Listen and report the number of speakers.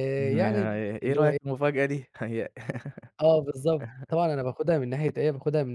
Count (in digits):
2